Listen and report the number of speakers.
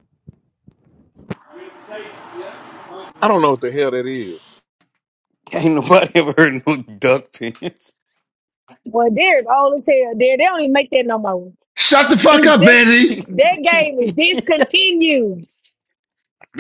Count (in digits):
4